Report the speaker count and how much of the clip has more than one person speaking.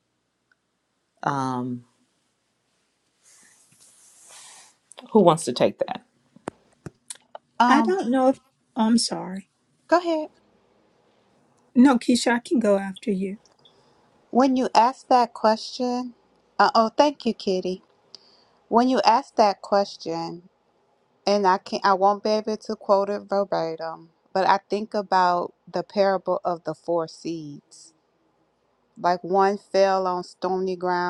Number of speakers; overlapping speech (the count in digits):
3, about 1%